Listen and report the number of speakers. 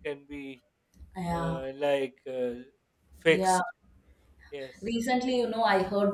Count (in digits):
2